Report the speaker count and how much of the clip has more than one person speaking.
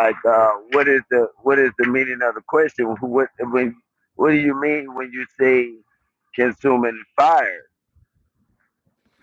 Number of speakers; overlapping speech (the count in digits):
1, no overlap